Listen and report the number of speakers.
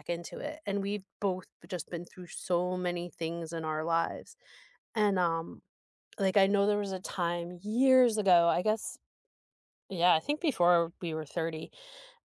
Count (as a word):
one